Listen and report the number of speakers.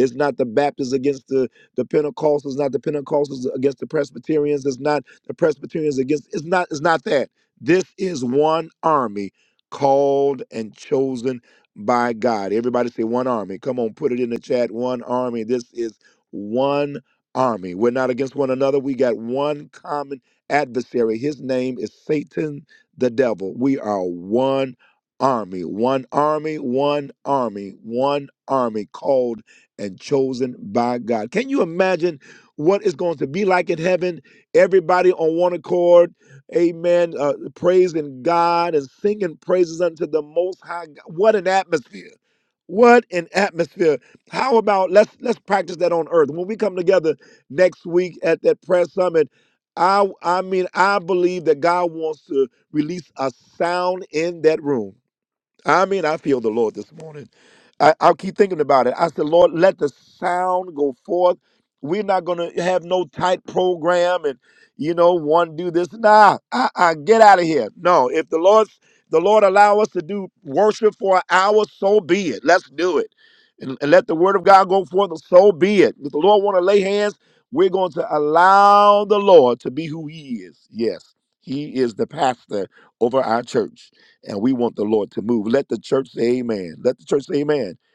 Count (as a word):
one